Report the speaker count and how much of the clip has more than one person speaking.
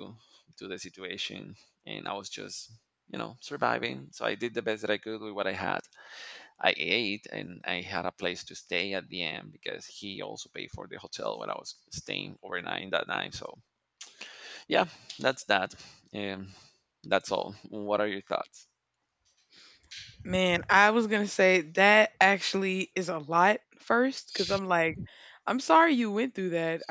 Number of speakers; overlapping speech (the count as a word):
two, no overlap